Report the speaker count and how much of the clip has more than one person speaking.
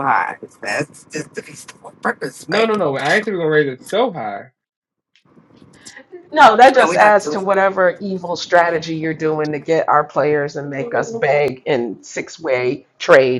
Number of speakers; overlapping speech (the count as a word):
three, about 13%